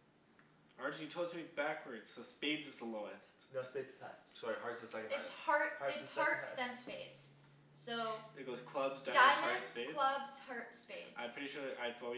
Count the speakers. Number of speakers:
four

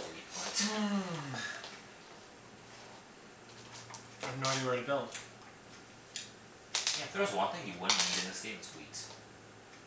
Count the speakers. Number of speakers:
two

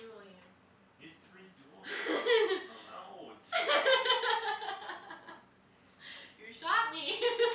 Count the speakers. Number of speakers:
two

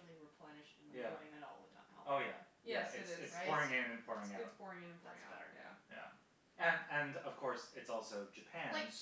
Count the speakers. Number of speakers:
three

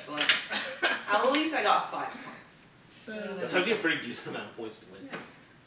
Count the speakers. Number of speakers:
three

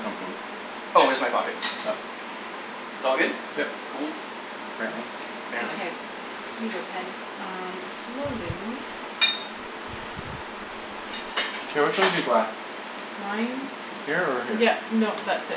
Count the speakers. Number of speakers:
three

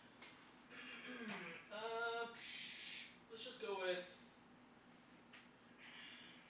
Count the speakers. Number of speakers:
one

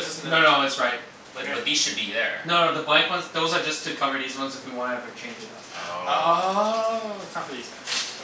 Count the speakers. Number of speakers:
three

